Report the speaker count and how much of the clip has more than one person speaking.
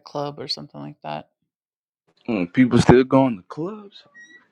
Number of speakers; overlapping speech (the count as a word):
two, no overlap